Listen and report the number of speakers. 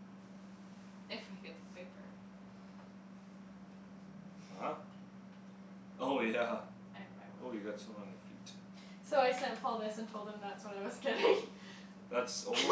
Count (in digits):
3